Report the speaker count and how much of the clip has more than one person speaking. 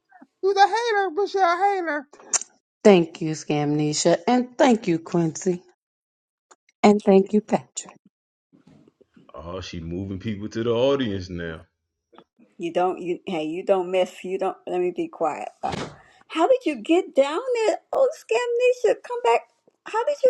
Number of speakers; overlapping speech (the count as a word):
four, no overlap